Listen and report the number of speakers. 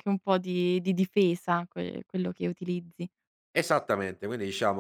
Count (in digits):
2